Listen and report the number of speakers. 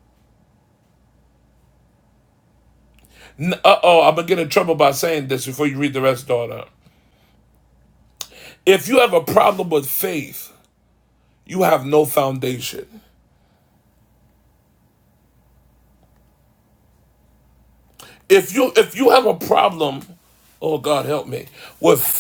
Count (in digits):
1